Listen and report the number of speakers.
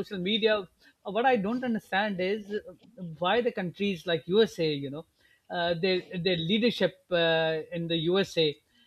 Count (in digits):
1